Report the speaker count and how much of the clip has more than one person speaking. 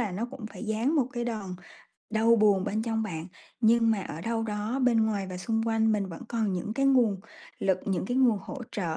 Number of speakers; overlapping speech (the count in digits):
1, no overlap